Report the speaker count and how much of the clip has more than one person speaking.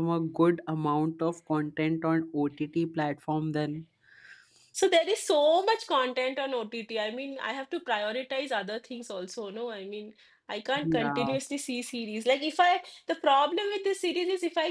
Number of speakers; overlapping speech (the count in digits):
2, about 4%